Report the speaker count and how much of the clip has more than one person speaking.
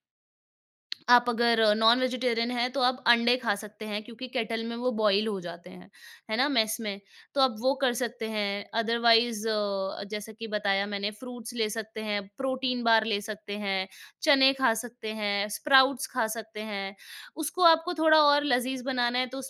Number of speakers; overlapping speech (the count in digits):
1, no overlap